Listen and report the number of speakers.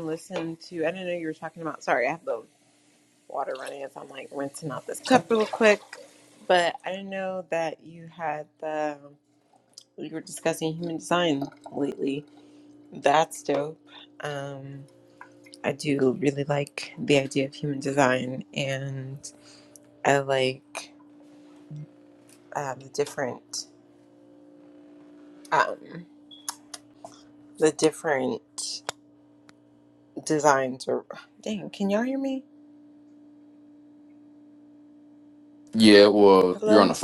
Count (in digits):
2